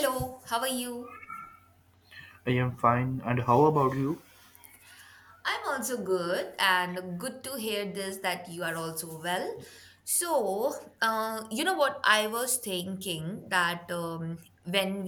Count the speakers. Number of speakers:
2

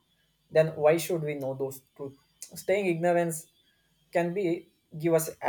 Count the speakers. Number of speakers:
1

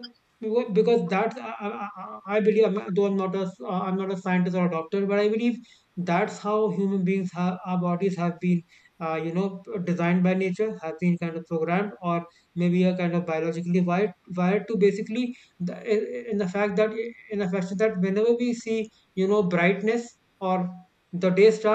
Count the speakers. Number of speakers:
1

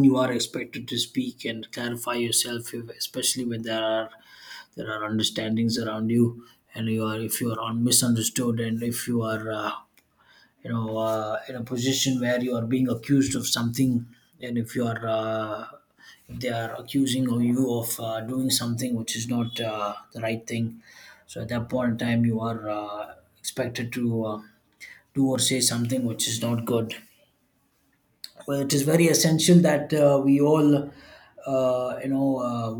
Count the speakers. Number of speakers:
1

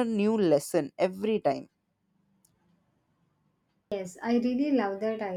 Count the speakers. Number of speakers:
2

